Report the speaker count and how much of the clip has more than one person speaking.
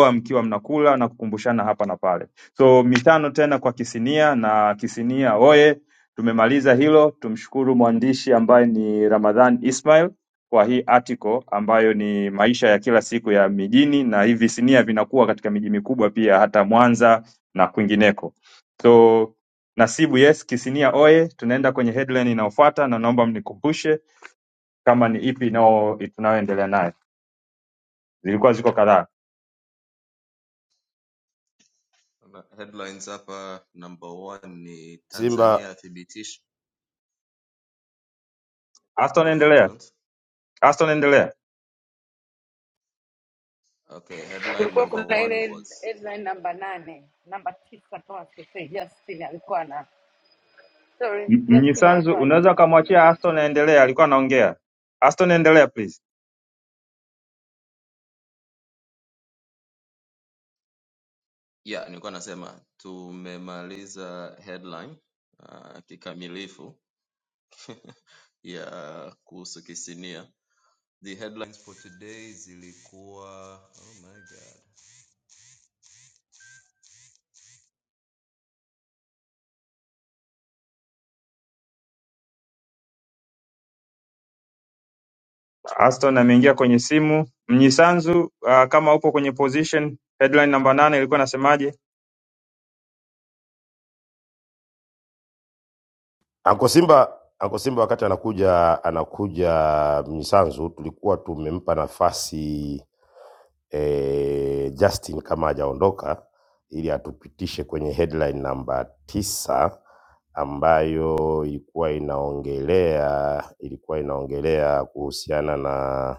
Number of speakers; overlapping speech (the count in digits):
4, about 3%